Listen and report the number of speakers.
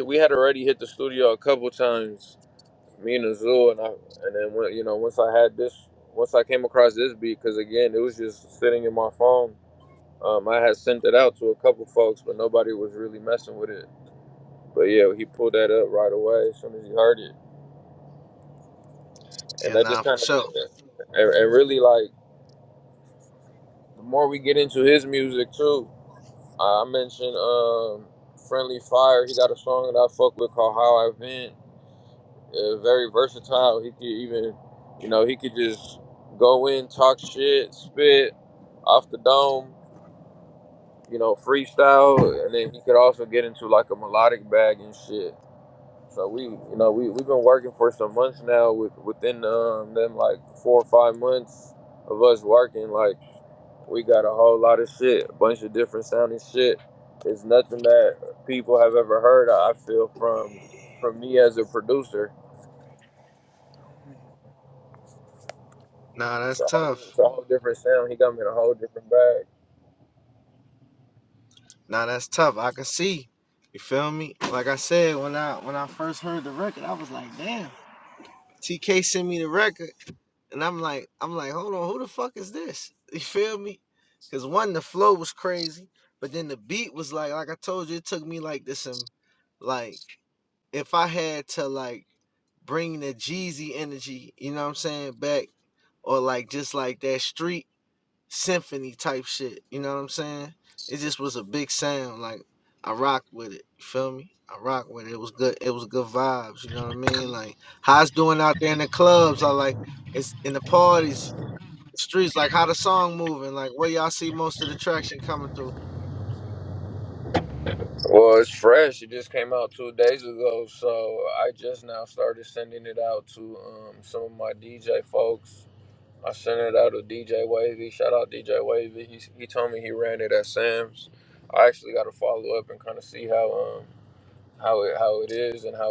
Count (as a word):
two